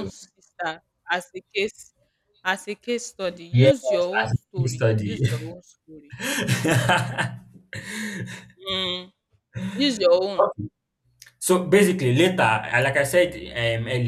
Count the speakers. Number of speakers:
2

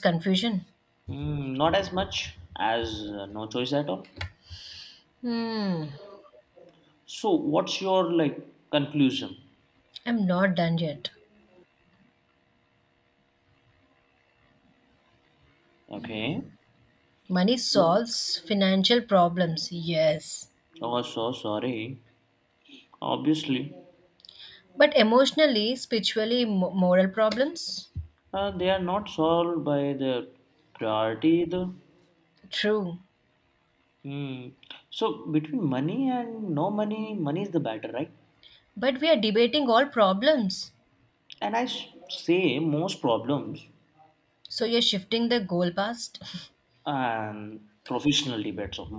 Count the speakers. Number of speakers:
2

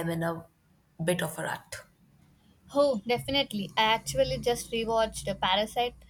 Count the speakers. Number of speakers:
2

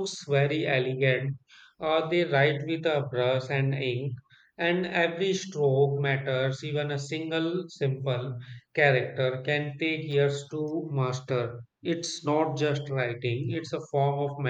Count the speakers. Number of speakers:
1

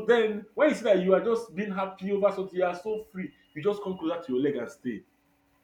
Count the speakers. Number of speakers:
1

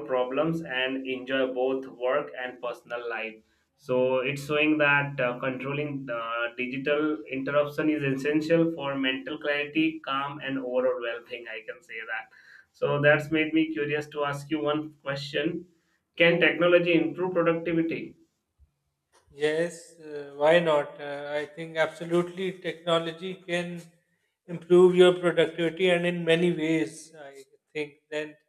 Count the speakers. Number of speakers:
2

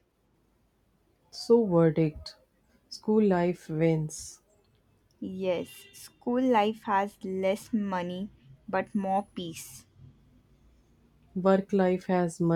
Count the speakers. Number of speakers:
2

